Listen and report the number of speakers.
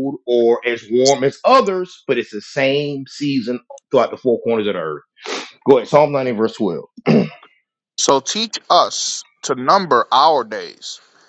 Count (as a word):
two